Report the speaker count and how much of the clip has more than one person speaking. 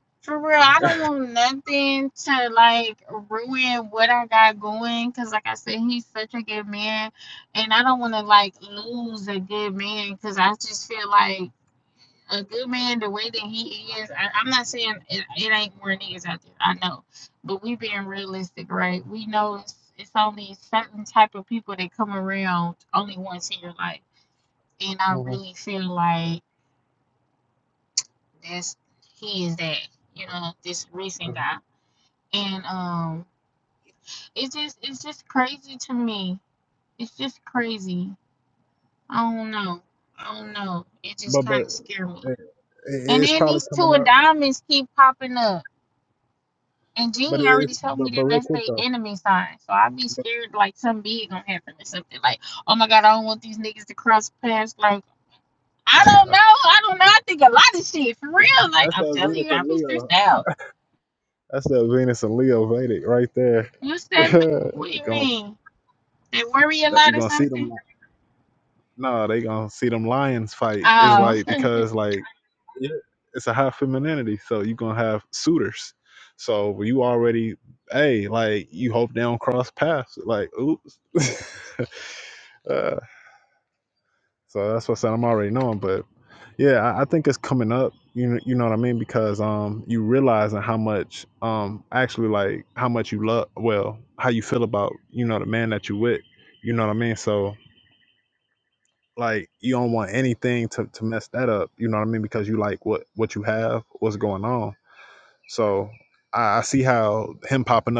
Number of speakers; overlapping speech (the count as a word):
two, about 6%